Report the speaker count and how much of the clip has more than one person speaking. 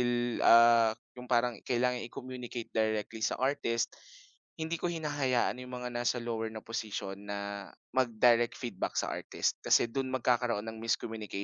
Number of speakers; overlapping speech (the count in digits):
1, no overlap